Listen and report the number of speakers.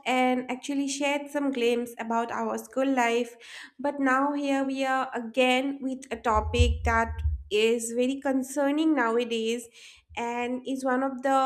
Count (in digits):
1